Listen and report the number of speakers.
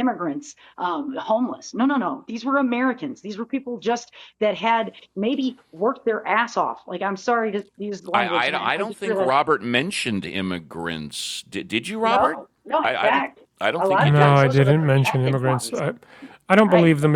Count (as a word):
three